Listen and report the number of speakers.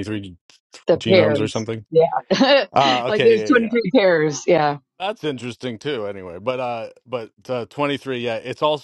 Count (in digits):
2